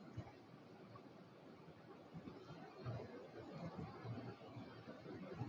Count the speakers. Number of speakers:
0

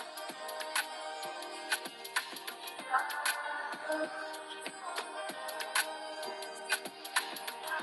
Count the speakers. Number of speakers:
0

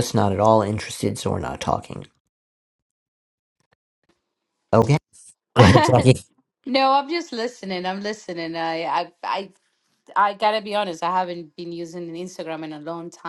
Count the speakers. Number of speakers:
2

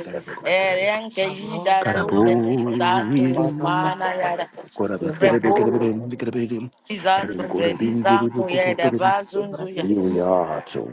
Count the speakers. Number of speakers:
3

